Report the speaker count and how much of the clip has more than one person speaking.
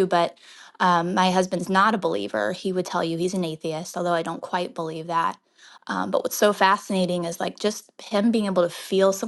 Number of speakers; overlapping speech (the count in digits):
1, no overlap